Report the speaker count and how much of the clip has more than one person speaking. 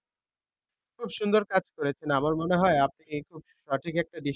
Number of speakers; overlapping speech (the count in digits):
1, no overlap